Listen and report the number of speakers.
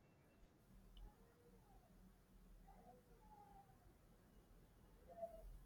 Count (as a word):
zero